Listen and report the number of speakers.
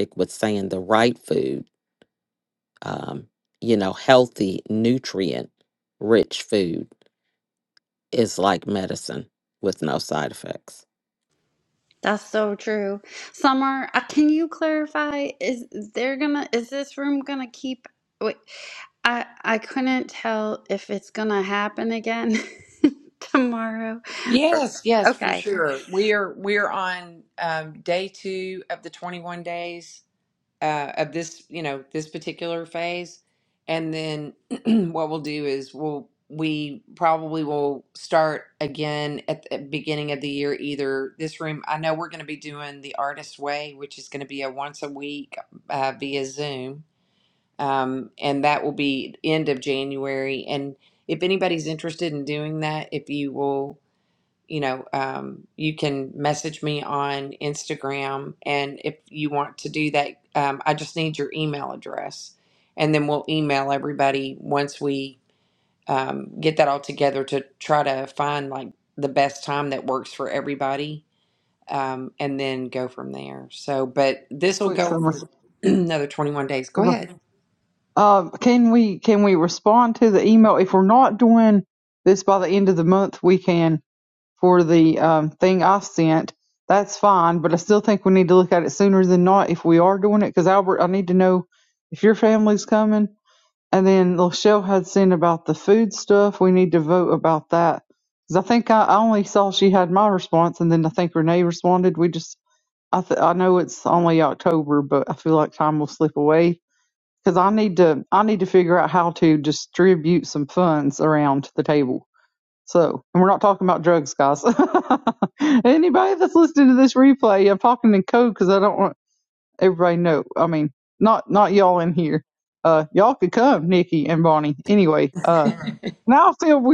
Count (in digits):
4